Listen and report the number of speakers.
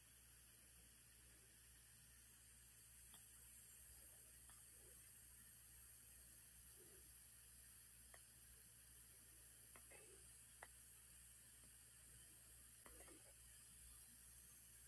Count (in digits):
0